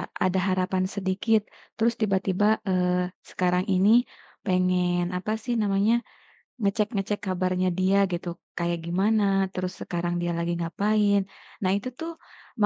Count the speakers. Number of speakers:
one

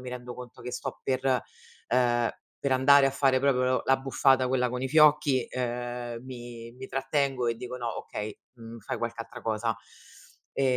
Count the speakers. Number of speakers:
one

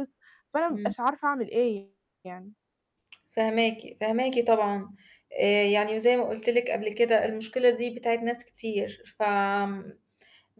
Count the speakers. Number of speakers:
two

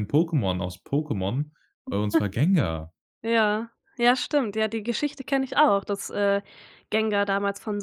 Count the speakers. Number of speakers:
two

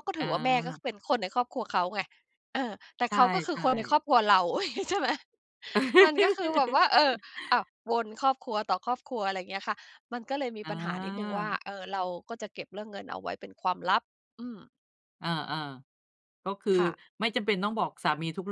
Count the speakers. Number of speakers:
two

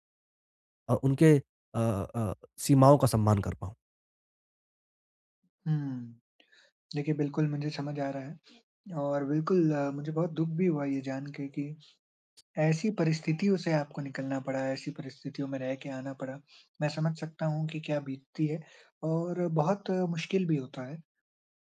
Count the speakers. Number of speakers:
two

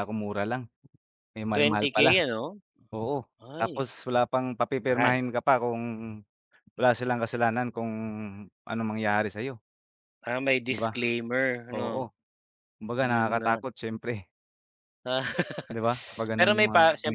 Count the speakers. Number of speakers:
two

